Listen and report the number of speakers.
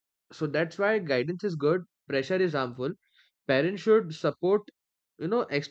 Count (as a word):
one